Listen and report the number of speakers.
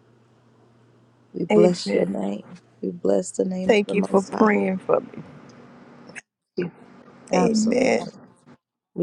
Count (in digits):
2